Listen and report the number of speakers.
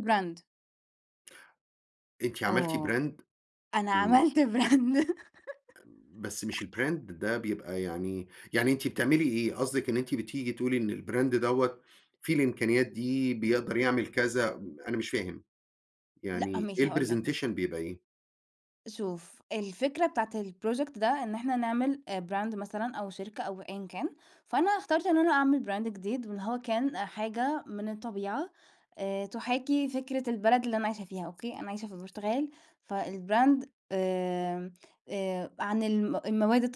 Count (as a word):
two